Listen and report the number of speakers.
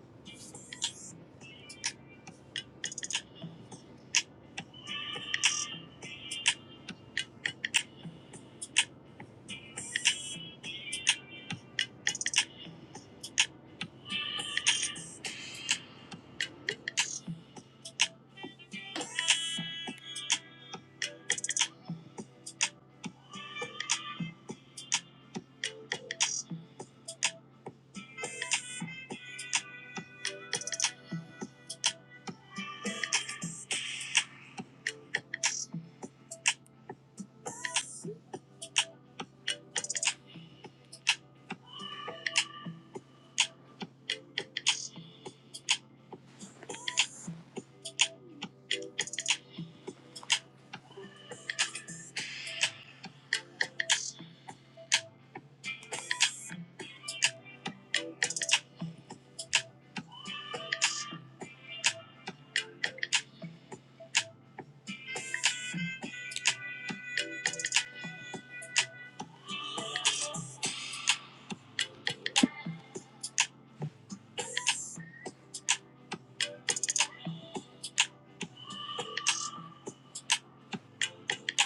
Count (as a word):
zero